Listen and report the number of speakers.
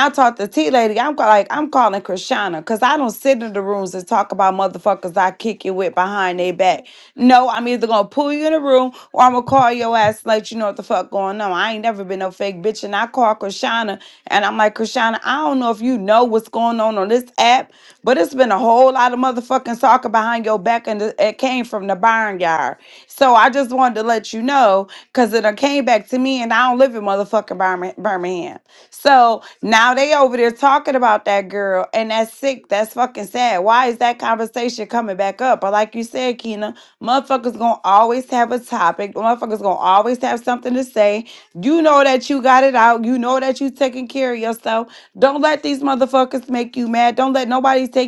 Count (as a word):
one